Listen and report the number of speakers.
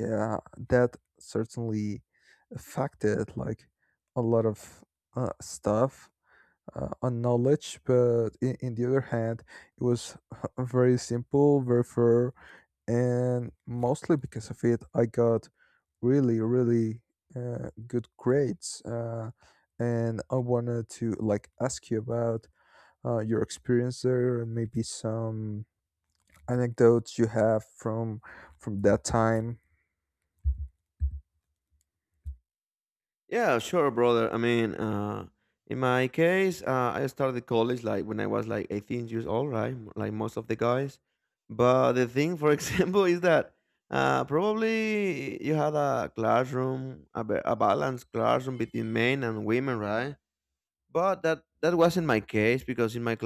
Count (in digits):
2